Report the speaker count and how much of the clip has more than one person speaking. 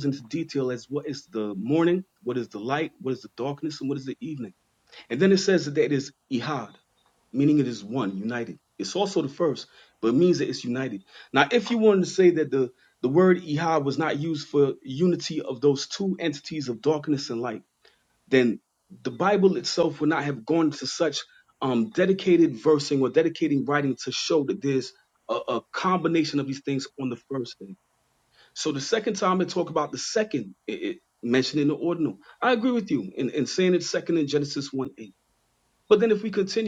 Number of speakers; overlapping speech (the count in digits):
1, no overlap